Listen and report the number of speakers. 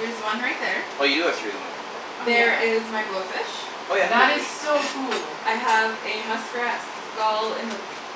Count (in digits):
3